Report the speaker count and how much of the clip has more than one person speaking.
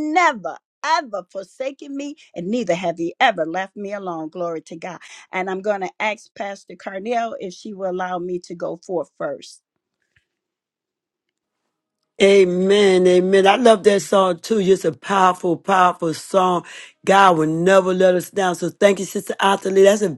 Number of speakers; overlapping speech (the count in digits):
2, no overlap